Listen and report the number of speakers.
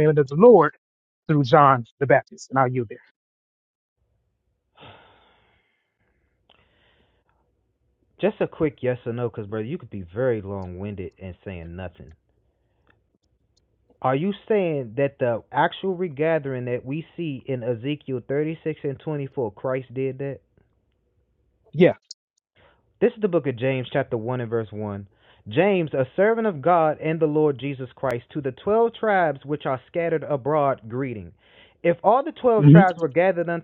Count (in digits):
2